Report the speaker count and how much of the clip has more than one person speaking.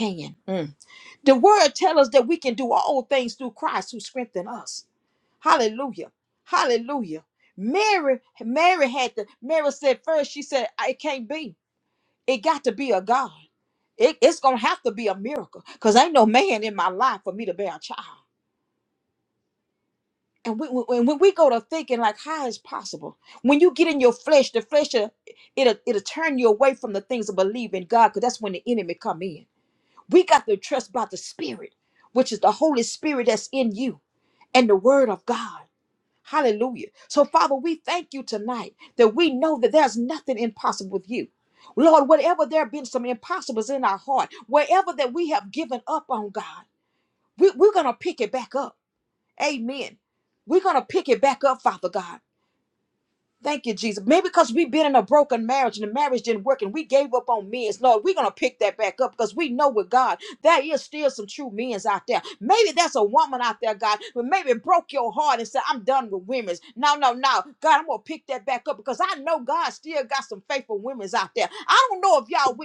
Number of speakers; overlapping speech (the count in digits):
1, no overlap